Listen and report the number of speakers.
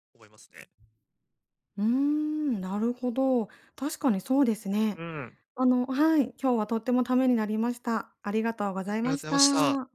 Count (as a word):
two